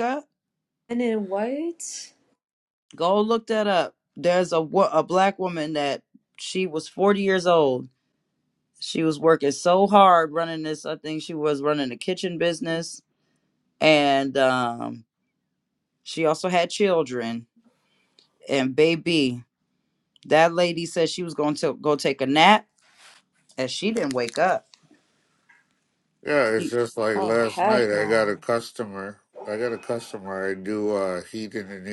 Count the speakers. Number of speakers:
3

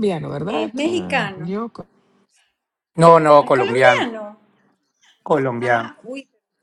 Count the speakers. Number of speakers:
3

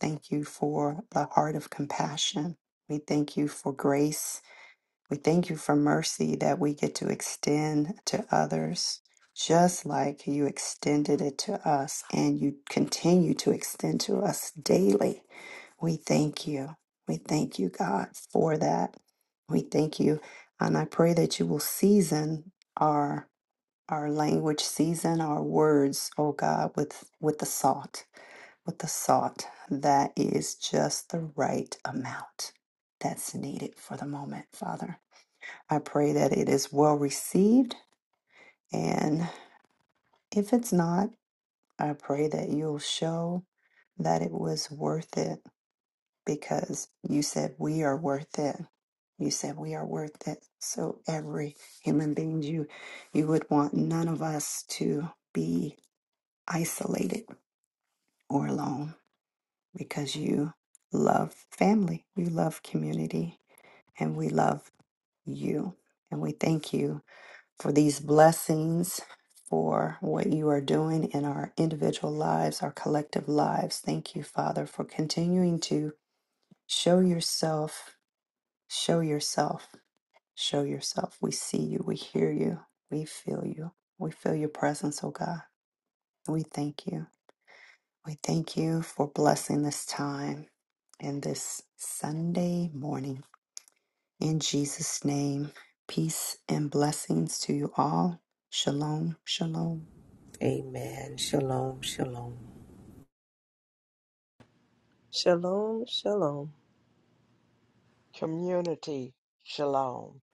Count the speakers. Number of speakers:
4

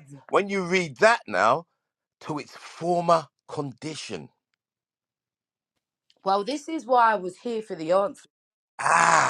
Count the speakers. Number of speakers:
2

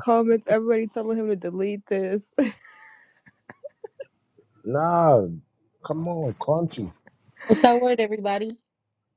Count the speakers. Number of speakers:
3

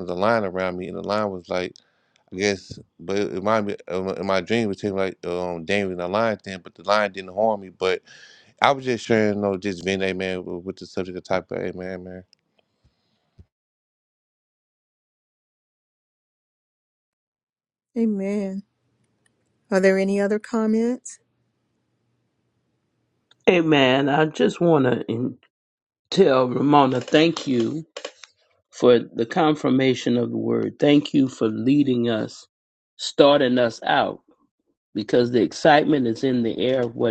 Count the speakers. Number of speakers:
3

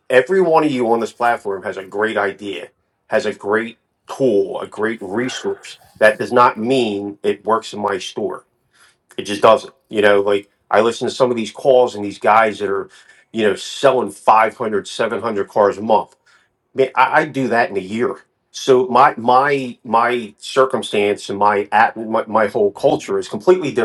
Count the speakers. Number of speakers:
1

